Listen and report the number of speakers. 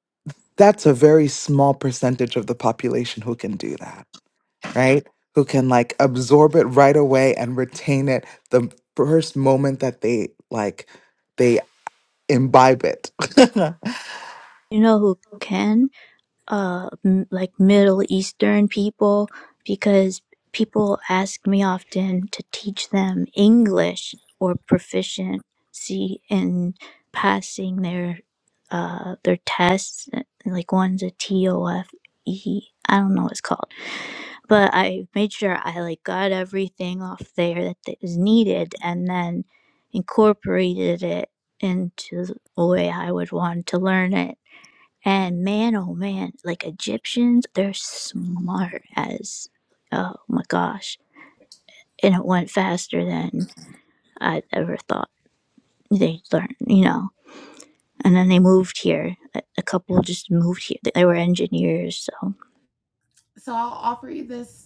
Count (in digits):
3